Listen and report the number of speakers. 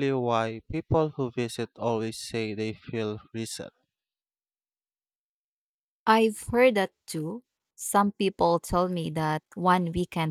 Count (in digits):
2